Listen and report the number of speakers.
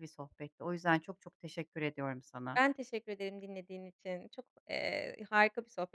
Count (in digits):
2